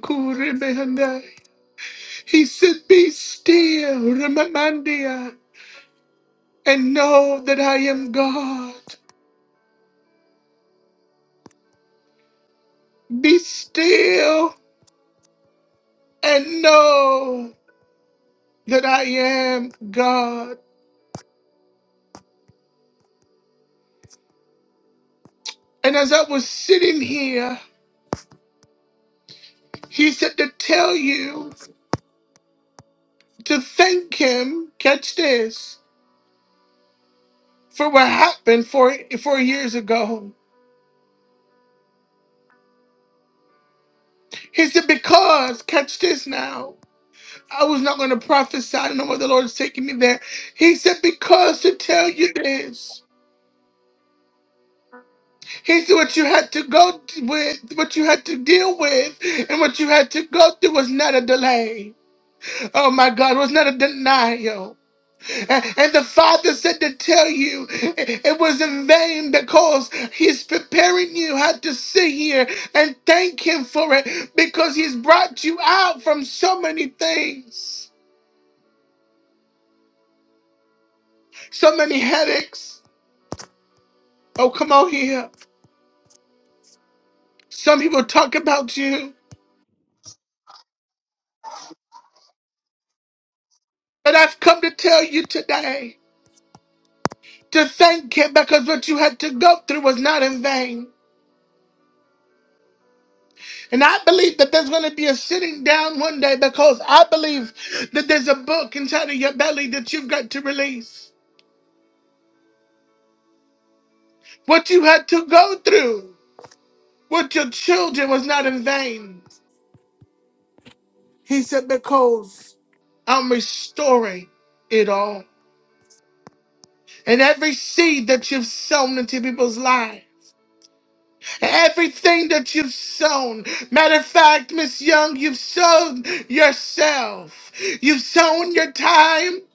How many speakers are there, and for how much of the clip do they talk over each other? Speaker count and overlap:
1, no overlap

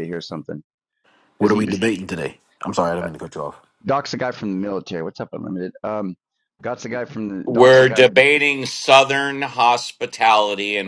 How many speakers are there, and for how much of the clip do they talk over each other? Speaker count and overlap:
3, about 10%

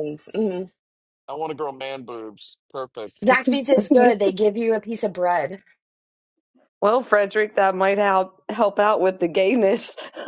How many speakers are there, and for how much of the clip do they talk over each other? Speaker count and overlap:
3, no overlap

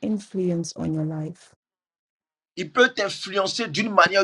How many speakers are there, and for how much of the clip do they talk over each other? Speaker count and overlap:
2, no overlap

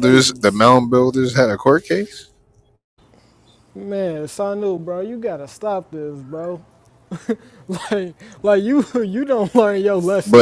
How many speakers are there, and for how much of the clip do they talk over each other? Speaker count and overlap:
2, about 6%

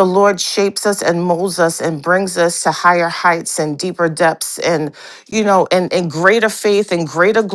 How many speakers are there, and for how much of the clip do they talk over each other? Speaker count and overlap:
1, no overlap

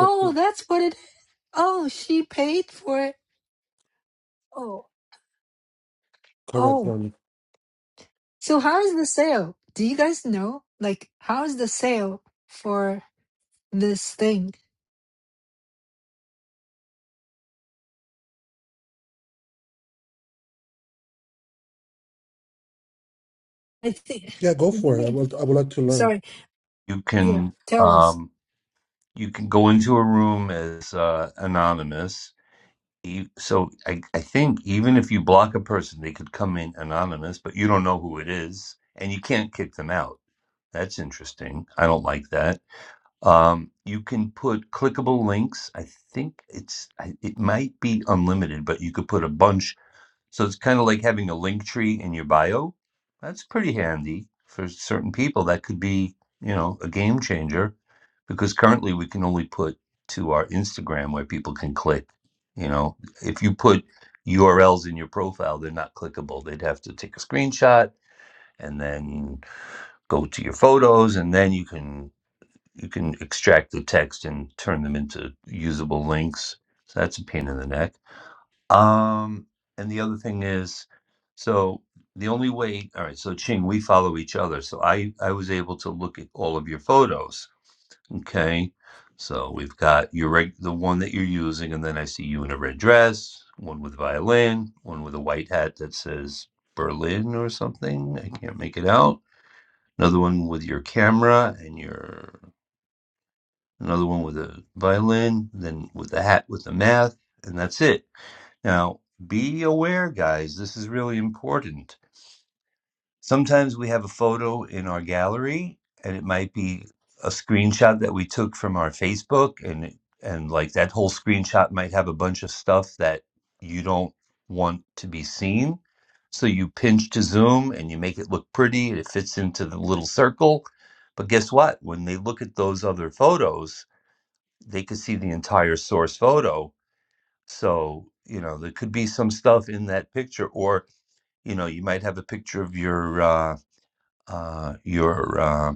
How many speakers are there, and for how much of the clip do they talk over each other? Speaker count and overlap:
3, about 1%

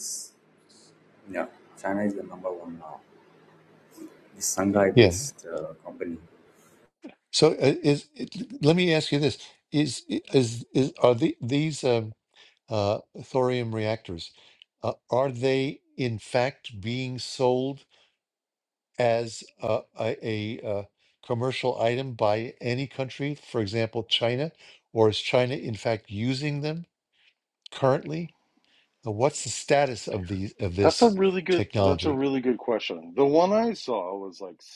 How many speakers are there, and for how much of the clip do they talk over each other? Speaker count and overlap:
3, about 3%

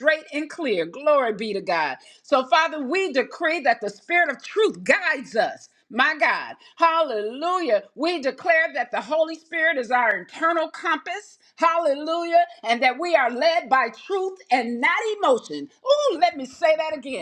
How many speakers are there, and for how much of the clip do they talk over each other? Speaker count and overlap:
1, no overlap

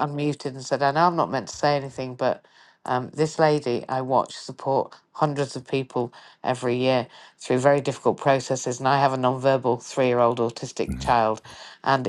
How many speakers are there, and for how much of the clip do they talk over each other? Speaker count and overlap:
1, no overlap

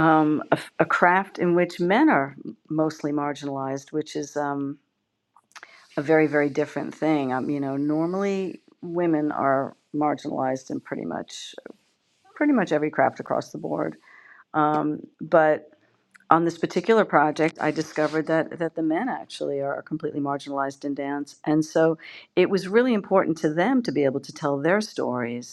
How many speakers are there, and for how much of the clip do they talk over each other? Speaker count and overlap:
1, no overlap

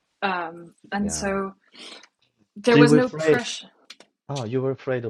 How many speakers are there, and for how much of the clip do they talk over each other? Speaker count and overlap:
2, about 20%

